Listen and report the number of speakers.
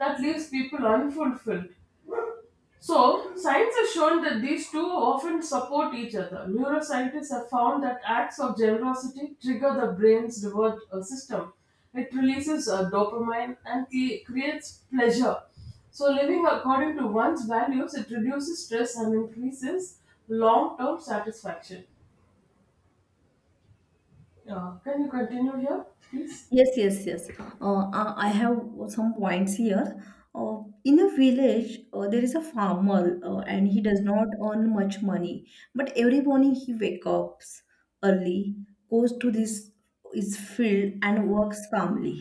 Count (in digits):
2